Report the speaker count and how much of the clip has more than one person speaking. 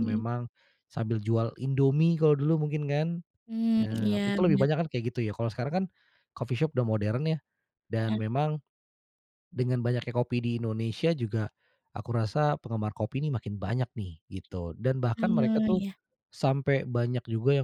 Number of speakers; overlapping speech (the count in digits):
2, about 11%